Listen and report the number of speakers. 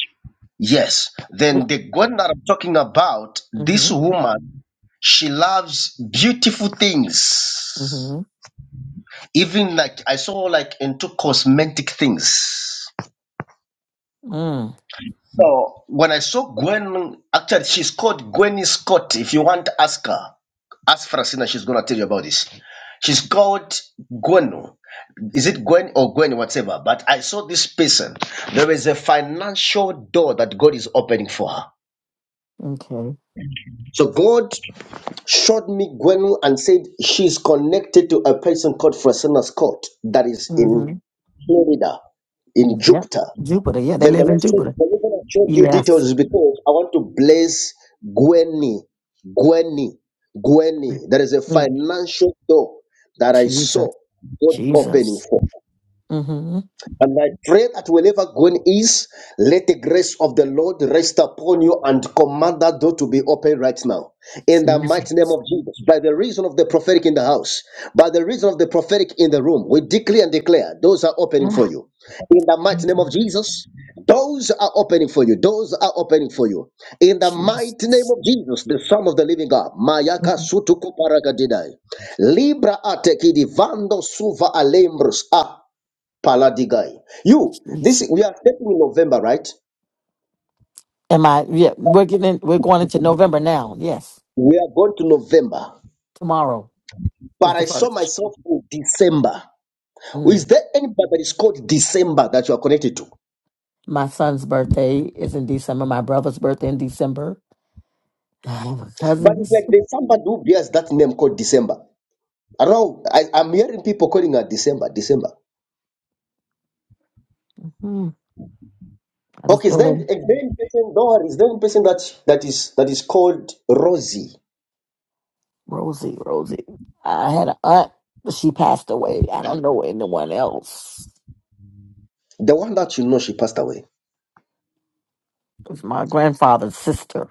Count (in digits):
2